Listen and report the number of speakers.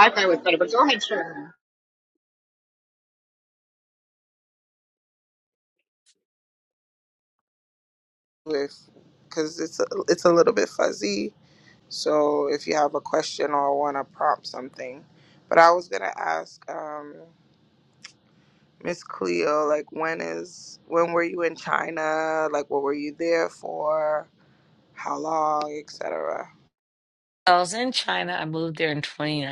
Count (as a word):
three